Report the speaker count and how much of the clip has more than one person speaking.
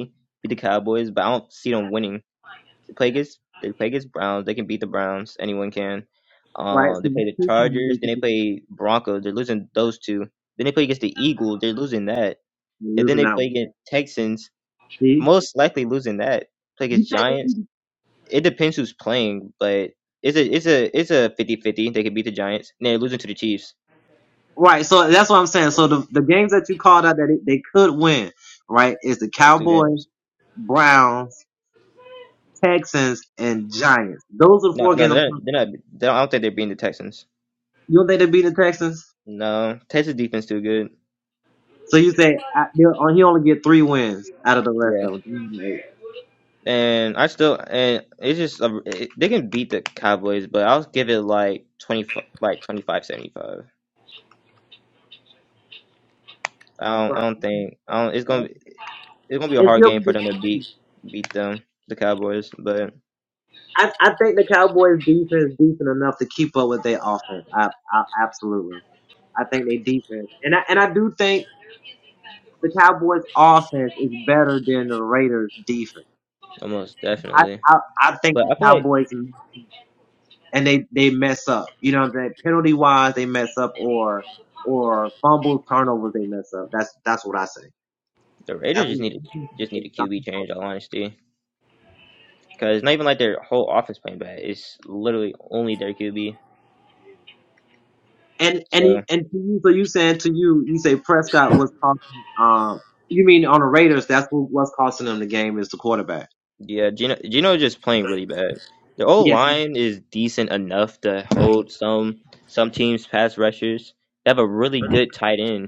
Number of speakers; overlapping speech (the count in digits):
2, about 6%